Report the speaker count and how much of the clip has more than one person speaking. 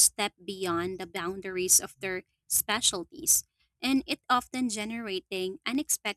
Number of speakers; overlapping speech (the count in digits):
1, no overlap